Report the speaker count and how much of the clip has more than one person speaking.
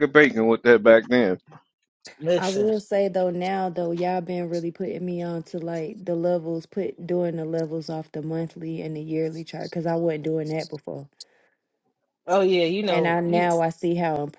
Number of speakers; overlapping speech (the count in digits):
3, about 7%